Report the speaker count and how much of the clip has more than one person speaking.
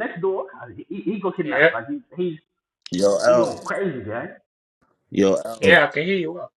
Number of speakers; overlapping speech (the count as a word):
three, about 12%